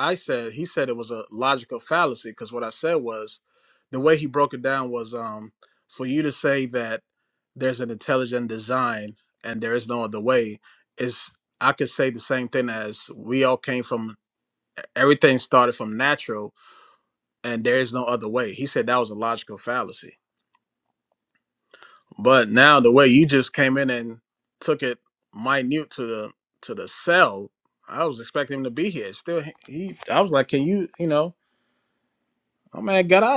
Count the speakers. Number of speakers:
1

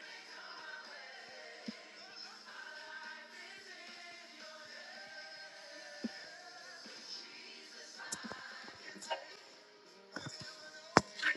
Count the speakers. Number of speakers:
0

